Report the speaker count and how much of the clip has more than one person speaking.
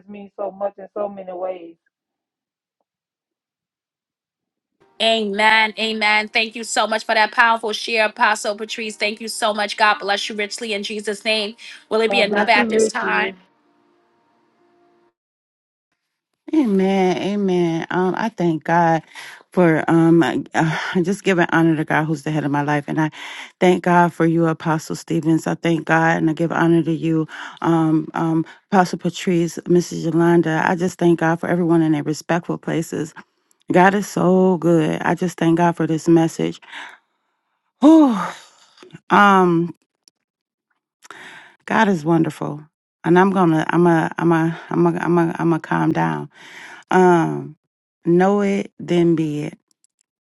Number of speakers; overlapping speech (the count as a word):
three, about 3%